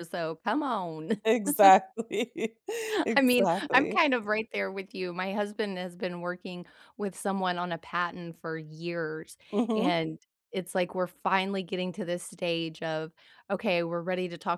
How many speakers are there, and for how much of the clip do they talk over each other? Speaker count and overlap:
2, about 7%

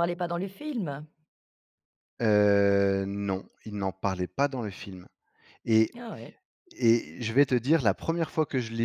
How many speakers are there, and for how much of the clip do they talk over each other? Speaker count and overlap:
2, no overlap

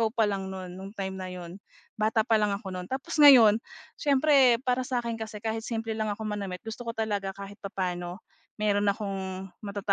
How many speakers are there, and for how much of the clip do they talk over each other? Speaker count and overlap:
1, no overlap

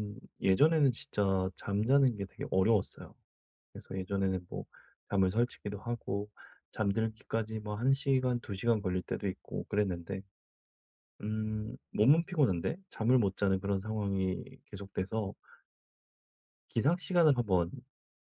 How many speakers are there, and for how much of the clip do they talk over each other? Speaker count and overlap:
1, no overlap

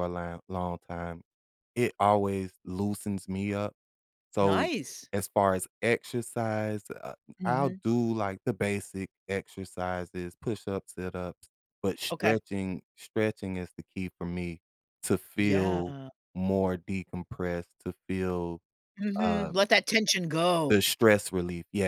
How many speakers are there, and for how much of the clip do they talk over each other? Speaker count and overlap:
2, about 9%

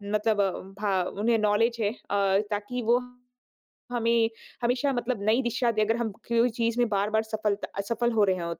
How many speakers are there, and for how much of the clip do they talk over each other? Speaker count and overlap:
1, no overlap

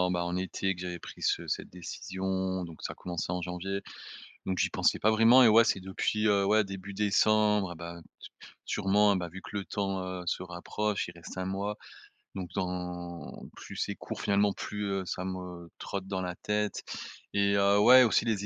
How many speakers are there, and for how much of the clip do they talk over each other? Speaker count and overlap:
1, no overlap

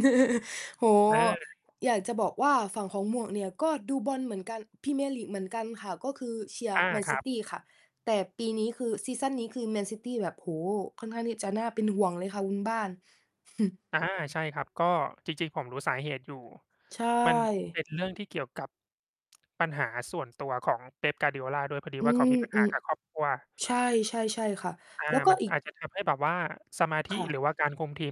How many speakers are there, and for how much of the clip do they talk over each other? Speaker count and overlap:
2, about 5%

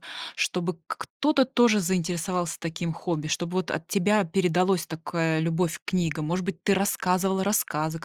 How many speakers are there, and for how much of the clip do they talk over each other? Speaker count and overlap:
1, no overlap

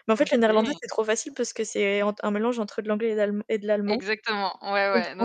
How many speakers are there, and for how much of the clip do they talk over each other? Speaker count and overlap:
2, about 21%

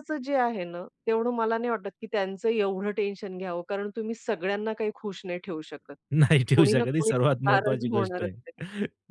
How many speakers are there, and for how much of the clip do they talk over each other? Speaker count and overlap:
2, about 16%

